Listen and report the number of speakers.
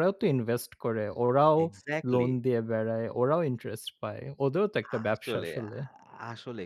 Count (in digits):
2